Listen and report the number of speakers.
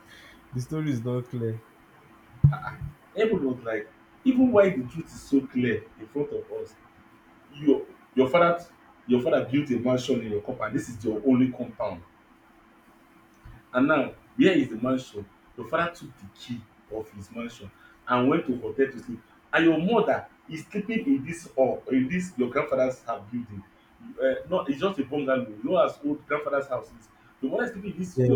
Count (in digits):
2